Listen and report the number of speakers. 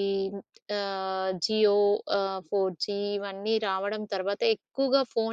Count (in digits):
1